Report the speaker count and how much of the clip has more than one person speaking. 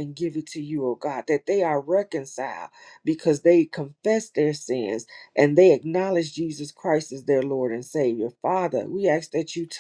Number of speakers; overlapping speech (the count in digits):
1, no overlap